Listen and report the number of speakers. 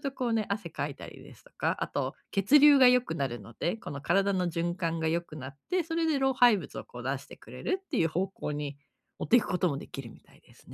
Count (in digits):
1